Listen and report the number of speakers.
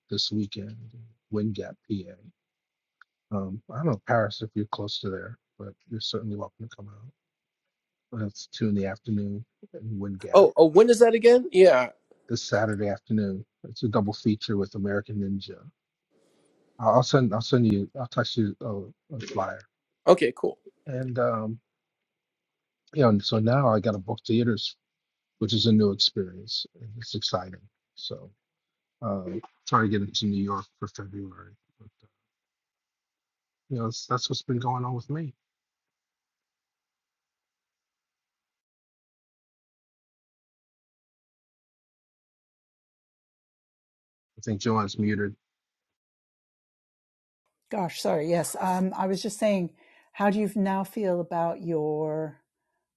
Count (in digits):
3